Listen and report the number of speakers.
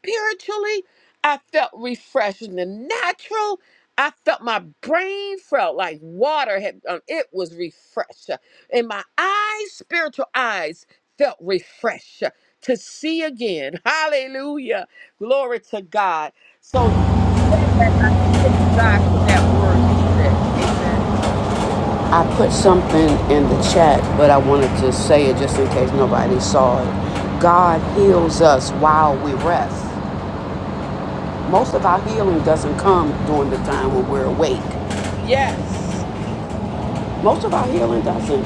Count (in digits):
2